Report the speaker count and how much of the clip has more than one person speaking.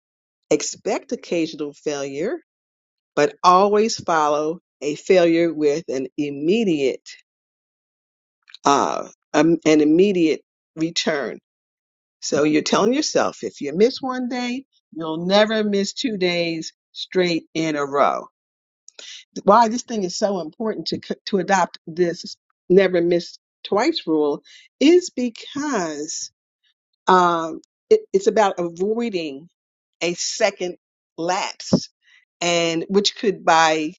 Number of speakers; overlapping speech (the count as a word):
one, no overlap